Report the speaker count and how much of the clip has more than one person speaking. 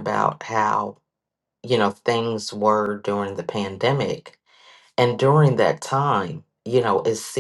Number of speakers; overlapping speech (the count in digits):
1, no overlap